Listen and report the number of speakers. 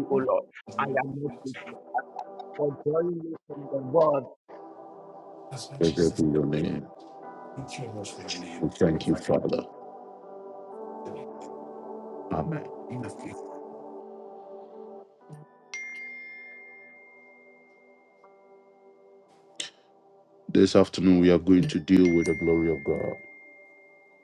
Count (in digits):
3